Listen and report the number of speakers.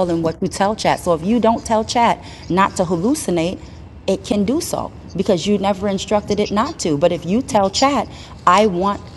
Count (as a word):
one